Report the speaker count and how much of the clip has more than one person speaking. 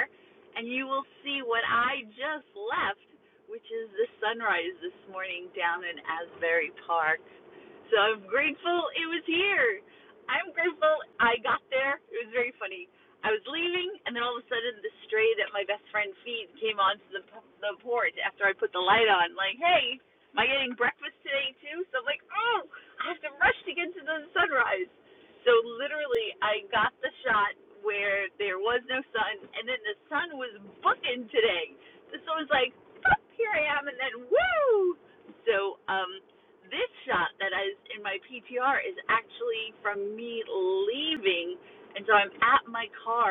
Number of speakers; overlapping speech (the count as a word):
one, no overlap